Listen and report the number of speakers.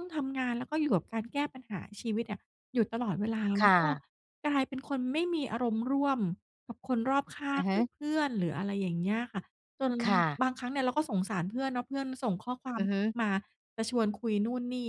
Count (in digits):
2